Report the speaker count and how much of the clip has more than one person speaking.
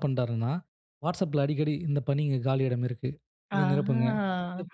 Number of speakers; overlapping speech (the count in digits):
2, about 12%